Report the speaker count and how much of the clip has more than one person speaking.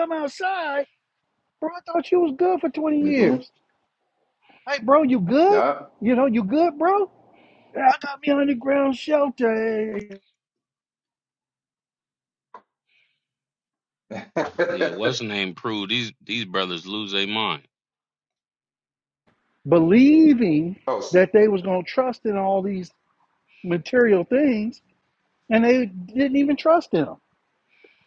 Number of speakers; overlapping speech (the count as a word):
three, about 2%